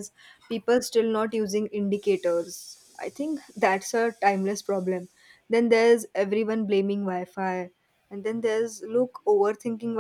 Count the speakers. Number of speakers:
1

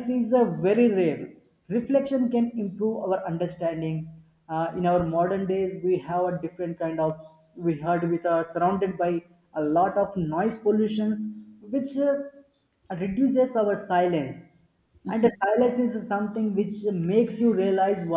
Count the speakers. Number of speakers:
1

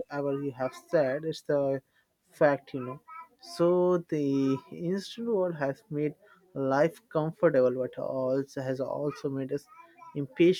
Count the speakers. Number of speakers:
1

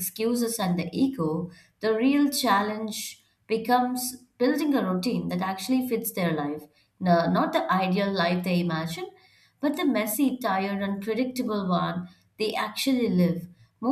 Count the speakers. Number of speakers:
1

